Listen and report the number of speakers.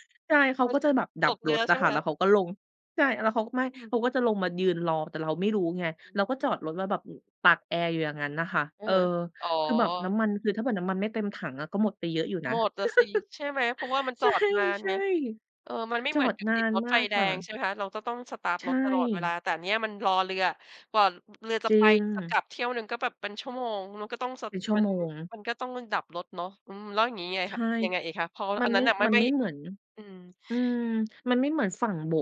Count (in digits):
2